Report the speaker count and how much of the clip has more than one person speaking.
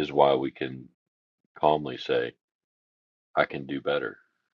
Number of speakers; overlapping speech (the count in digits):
1, no overlap